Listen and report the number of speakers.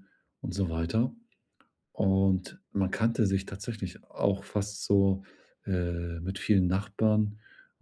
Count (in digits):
1